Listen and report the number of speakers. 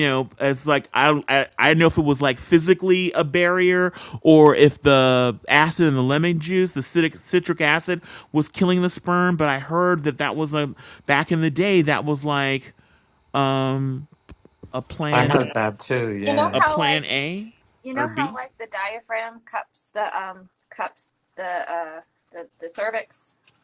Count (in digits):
3